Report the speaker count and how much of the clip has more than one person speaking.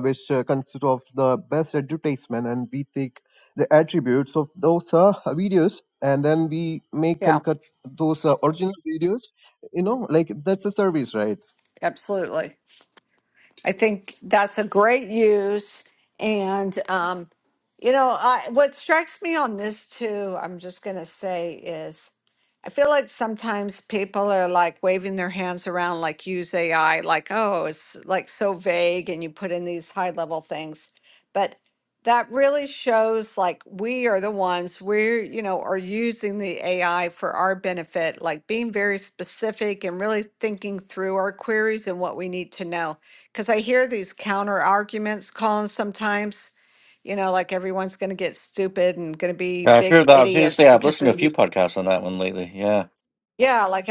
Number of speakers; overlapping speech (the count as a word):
three, about 3%